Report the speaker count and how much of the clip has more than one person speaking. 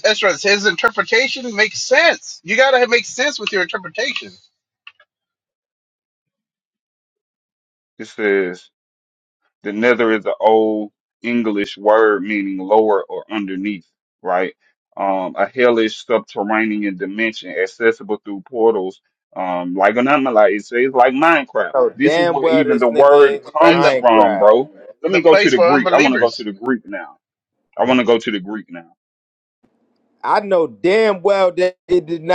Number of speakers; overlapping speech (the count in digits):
3, about 13%